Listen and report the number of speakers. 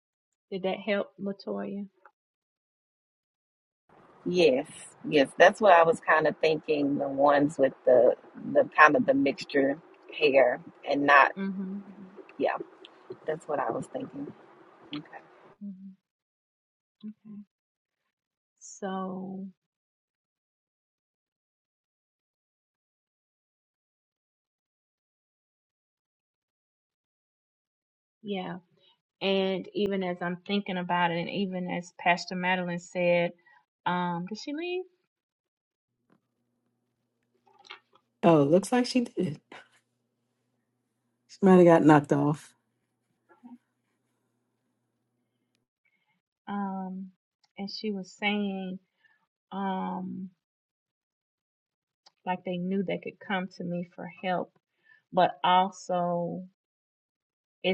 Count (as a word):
three